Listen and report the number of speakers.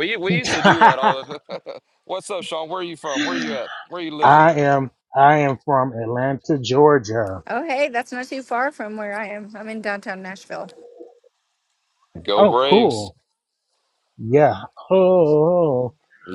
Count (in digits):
3